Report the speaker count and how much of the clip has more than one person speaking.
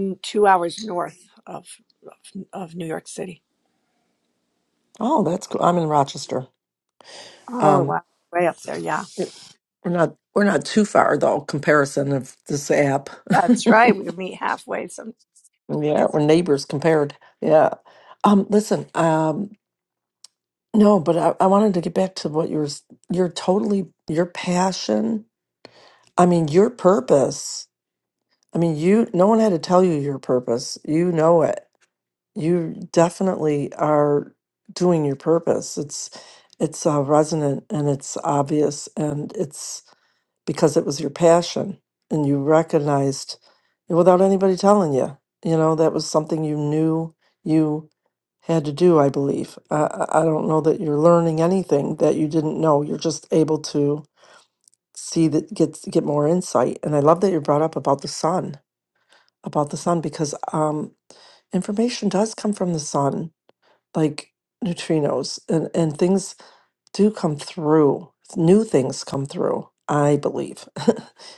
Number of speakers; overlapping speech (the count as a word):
two, about 2%